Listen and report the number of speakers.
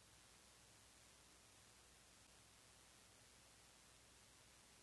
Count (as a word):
zero